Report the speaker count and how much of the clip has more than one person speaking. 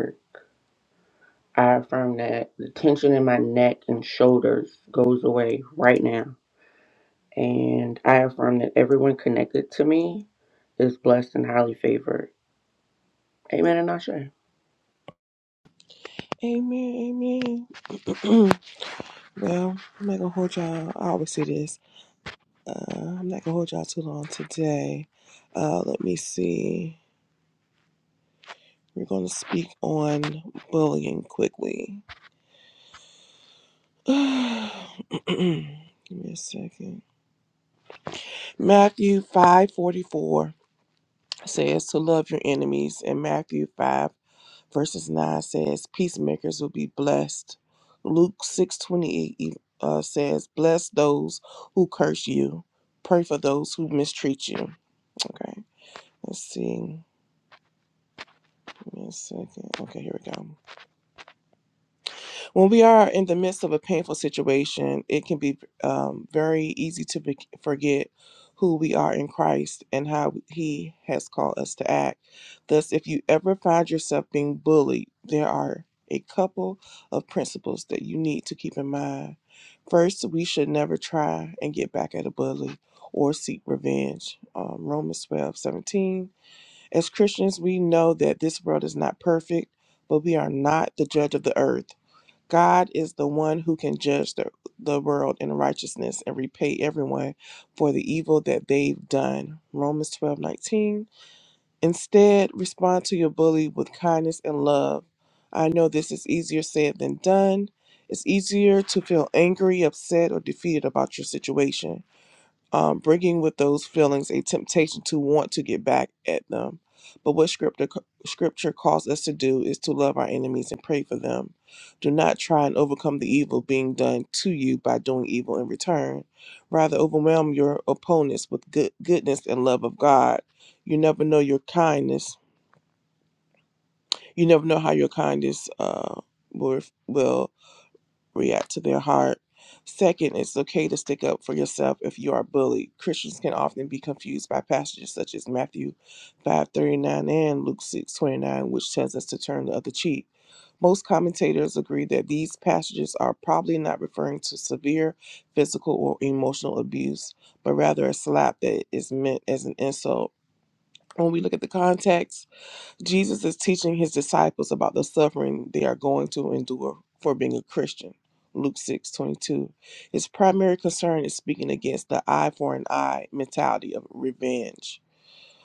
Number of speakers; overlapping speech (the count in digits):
2, no overlap